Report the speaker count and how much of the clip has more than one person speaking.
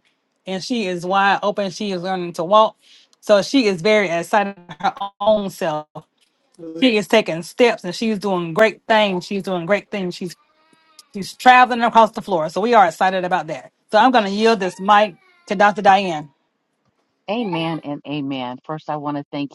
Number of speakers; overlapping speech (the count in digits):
2, no overlap